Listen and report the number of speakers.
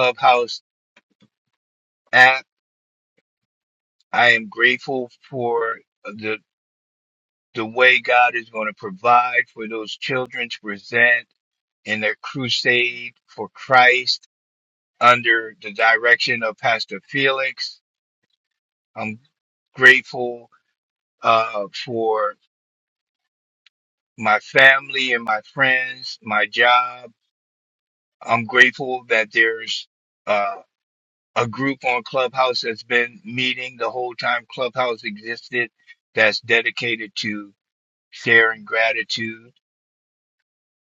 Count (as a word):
one